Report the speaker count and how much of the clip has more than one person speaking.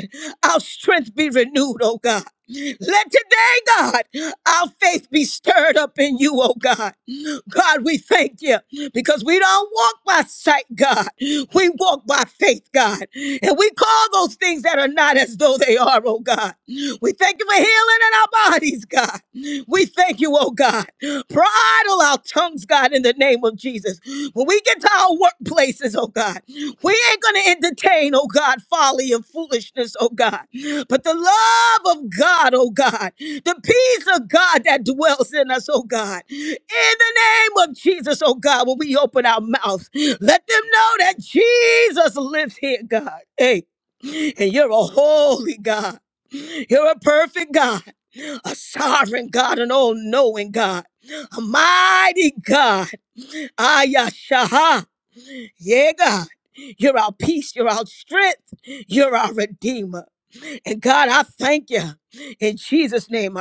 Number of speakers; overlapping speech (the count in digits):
1, no overlap